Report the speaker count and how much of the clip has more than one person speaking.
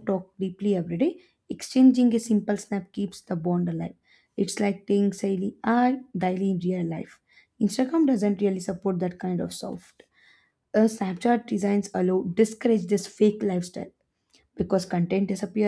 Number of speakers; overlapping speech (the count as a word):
one, no overlap